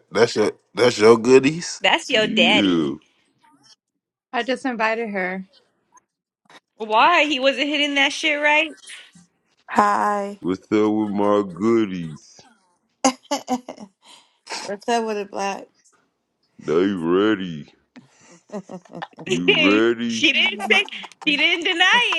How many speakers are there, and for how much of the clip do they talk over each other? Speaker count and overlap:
five, about 6%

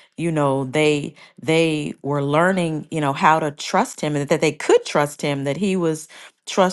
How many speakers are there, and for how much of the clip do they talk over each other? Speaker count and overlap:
one, no overlap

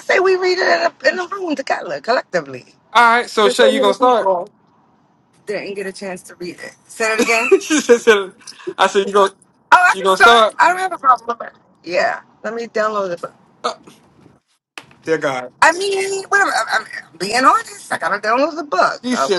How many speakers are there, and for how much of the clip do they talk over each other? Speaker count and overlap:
two, about 9%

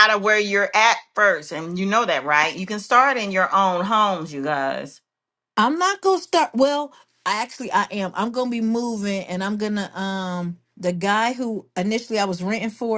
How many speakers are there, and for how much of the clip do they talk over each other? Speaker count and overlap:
two, no overlap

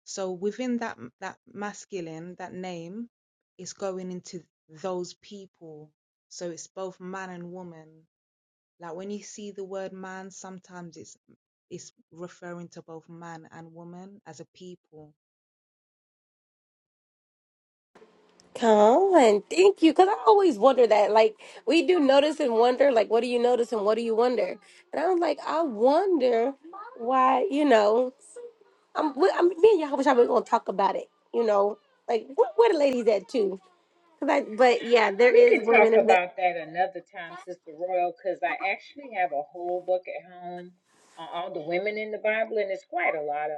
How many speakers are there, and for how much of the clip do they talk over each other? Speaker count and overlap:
three, about 3%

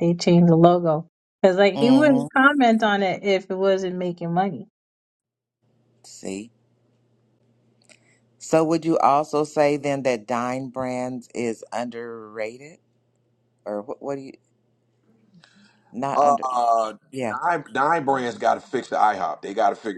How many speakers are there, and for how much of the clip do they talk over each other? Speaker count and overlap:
three, about 5%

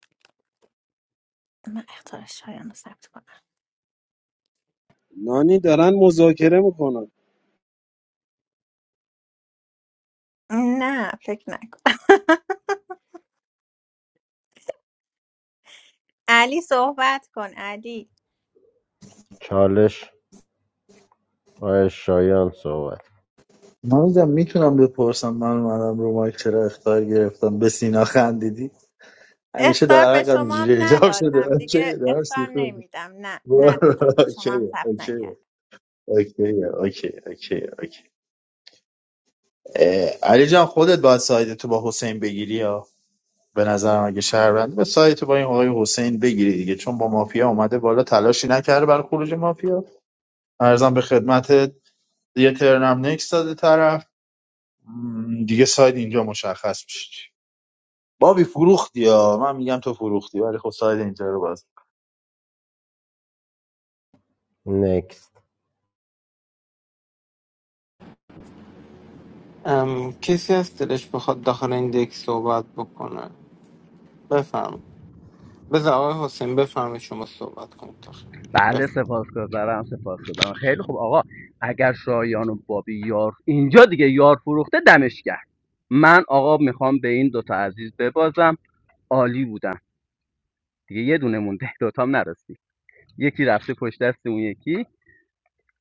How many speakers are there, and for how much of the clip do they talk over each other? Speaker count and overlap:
six, about 5%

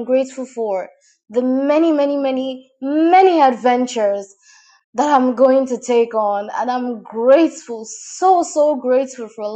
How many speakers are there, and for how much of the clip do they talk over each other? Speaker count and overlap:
one, no overlap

